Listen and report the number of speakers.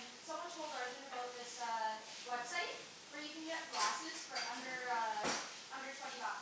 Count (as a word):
one